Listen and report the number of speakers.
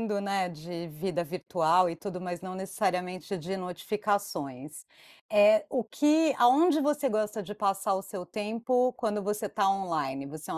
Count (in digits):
1